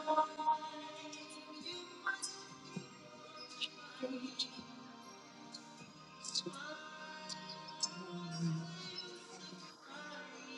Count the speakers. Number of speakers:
zero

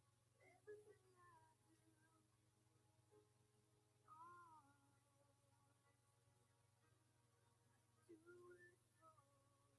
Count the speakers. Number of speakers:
zero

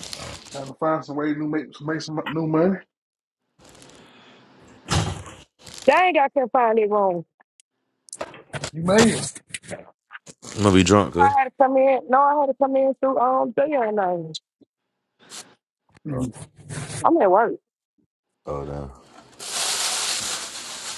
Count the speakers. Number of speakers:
three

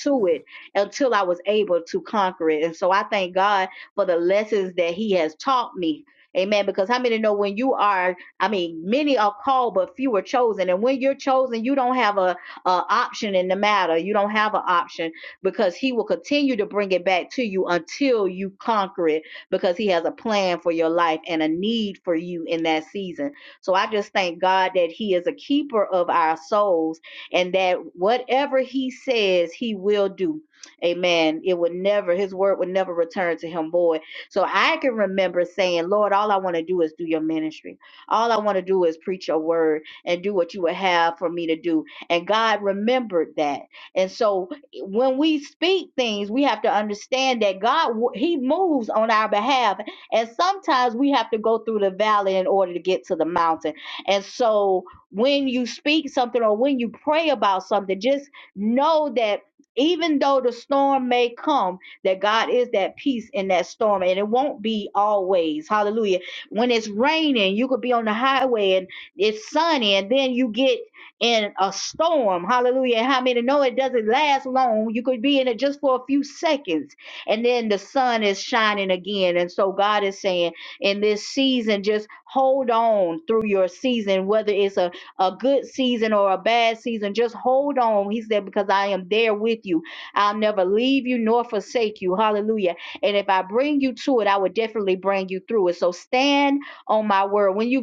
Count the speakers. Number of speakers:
one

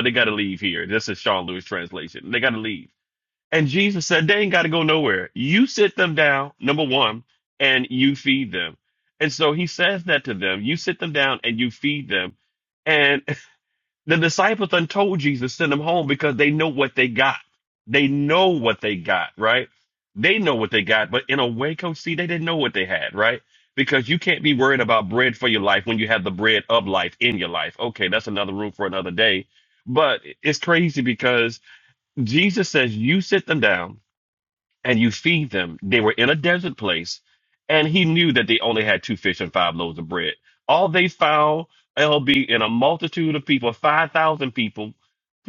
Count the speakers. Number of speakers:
one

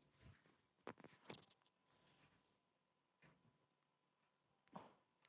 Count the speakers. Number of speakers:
zero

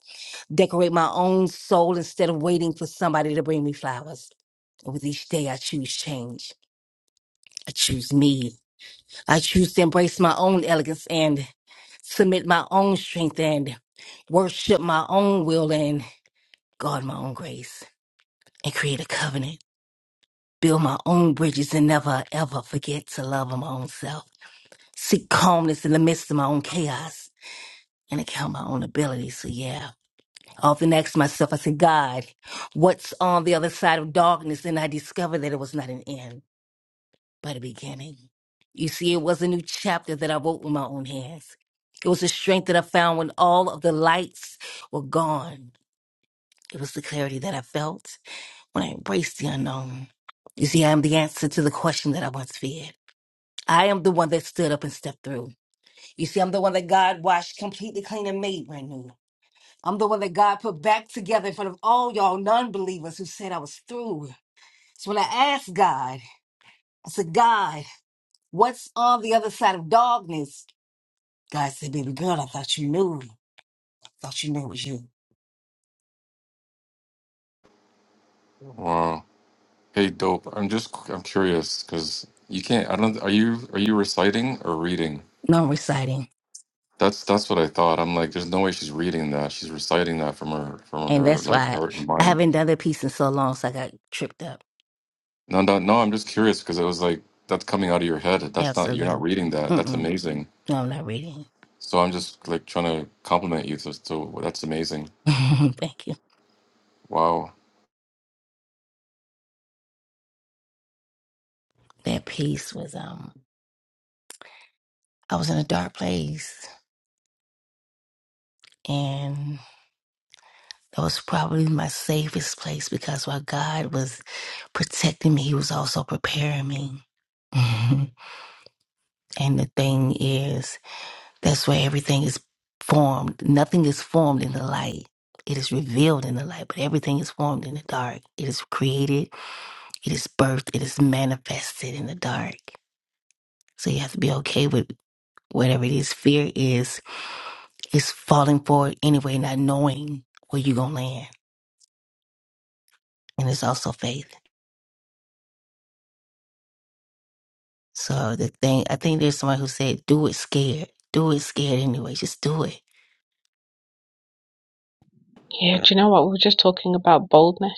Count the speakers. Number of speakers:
three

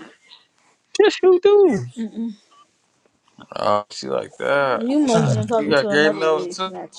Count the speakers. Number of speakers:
three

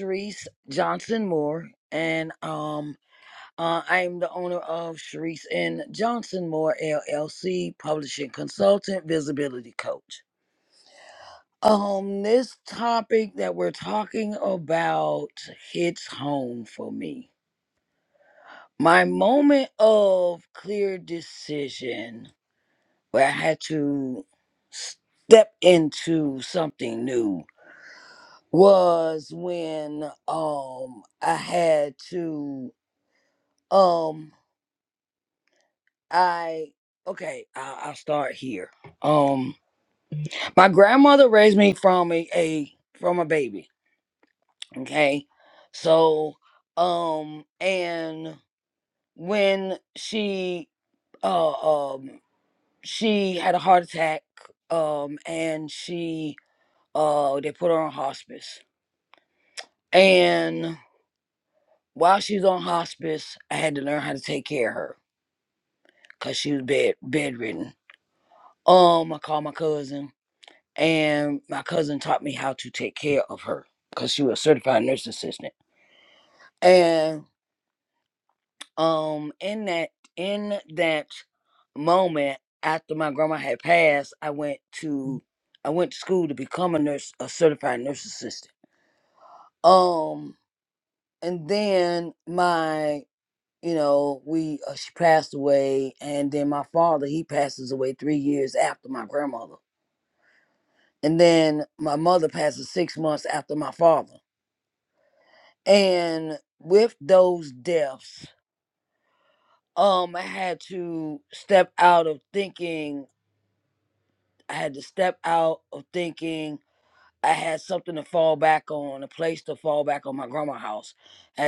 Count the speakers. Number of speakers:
one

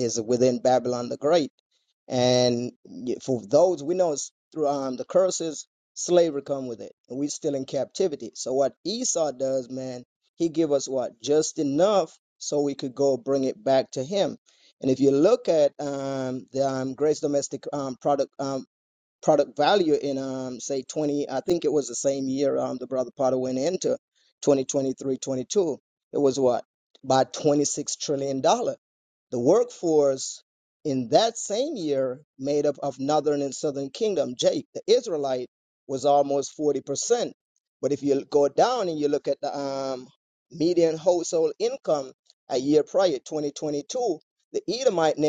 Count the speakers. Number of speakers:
one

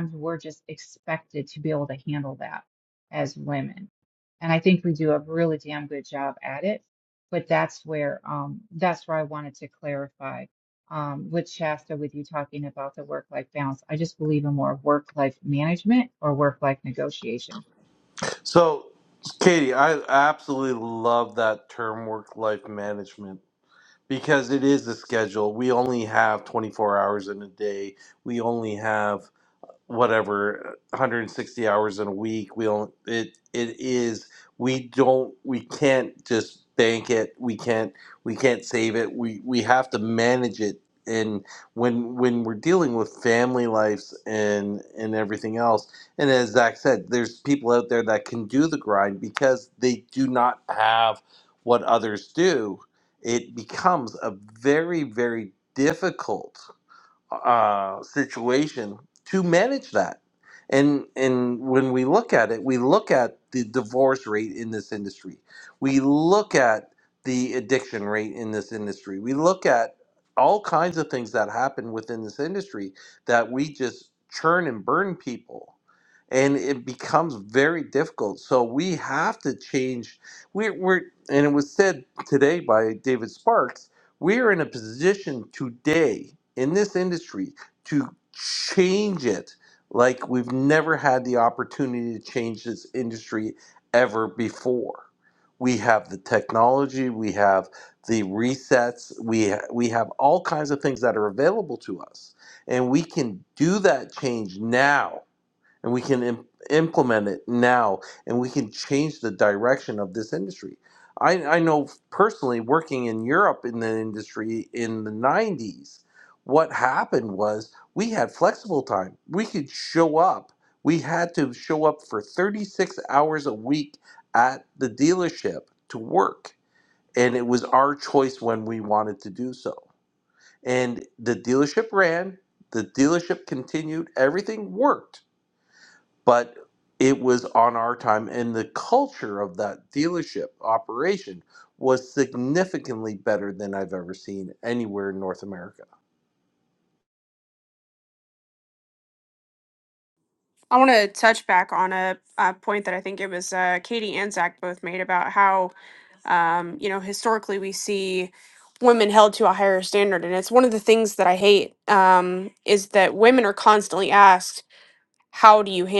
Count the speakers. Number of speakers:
three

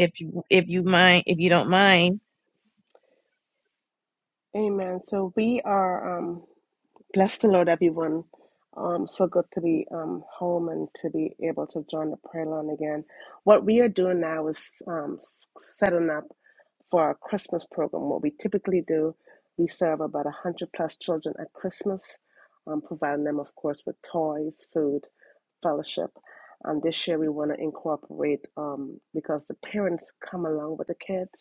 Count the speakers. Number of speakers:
two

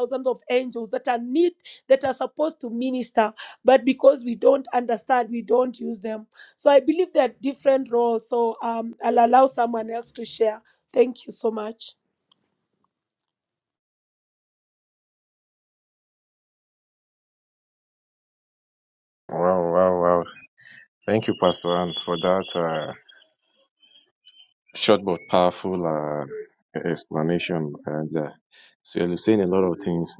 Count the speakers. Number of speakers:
two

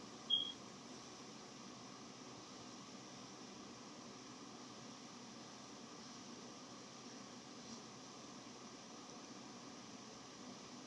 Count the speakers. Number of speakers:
zero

